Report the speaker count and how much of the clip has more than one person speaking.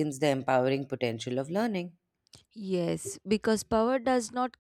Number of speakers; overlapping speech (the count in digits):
2, no overlap